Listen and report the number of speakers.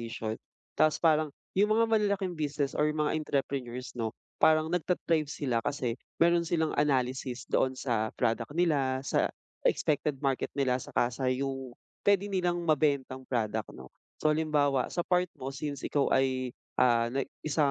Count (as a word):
one